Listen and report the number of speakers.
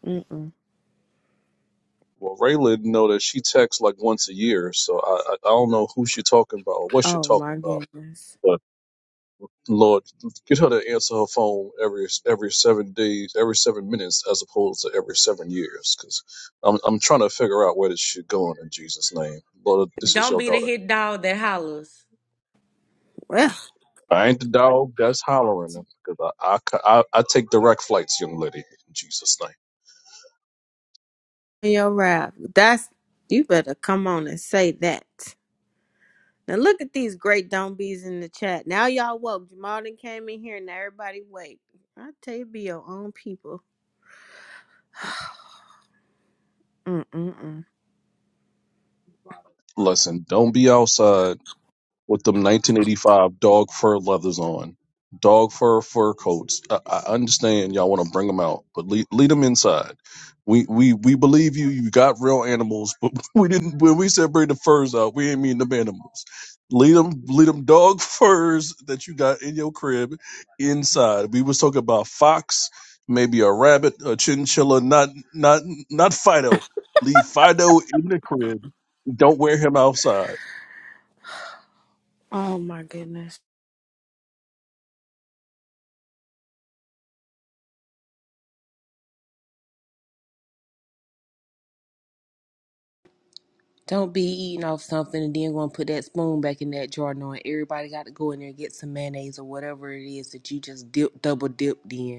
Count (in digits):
4